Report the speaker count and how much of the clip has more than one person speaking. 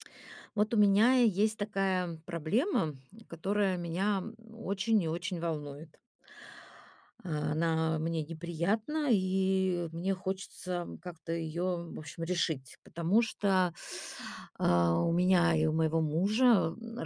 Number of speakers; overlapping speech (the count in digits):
1, no overlap